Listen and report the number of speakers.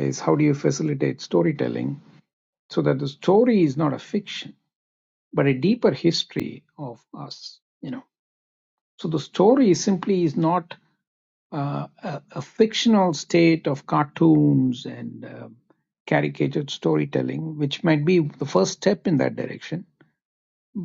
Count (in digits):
1